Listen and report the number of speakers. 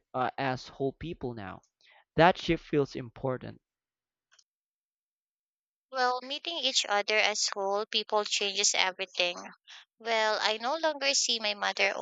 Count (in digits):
2